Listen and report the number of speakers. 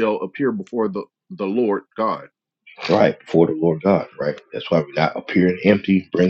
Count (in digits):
2